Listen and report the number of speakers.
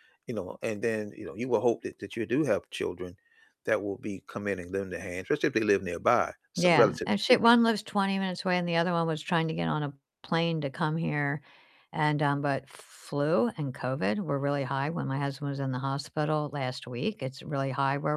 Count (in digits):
2